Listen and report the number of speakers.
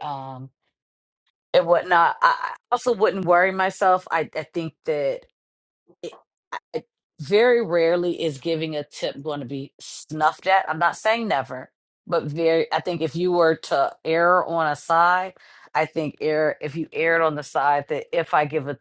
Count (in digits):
1